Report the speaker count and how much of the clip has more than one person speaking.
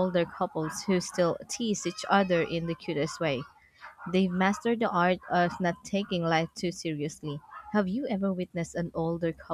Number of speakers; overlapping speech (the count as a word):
one, no overlap